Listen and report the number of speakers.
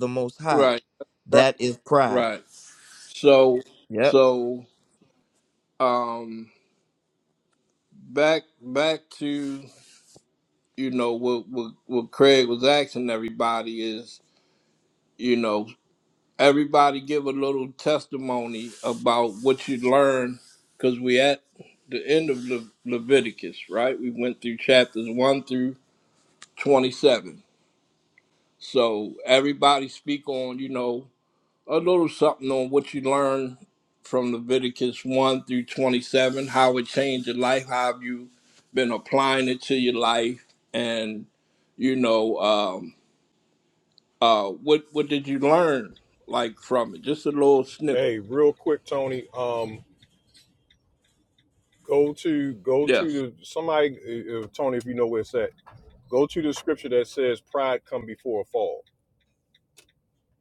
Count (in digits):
3